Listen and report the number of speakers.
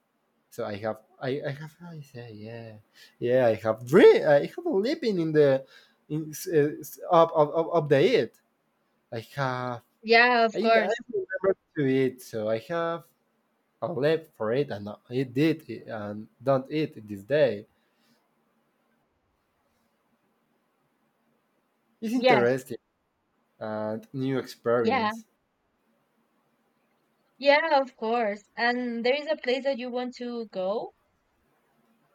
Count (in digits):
2